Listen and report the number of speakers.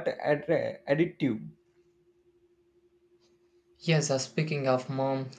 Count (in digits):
2